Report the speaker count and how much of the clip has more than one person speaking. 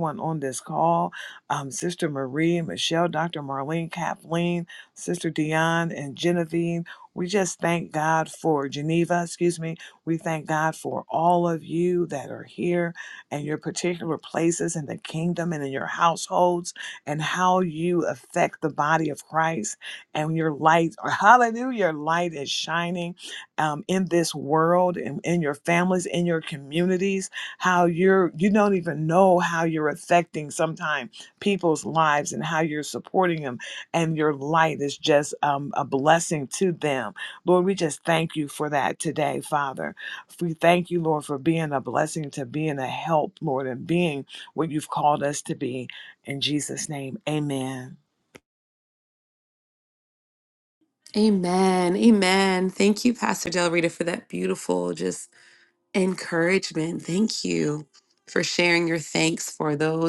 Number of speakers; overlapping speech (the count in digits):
2, no overlap